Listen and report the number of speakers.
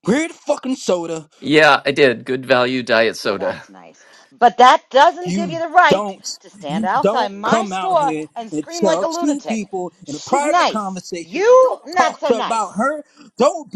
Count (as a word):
three